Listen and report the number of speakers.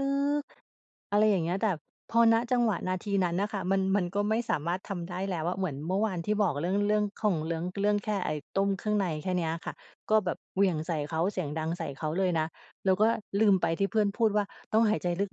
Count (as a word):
one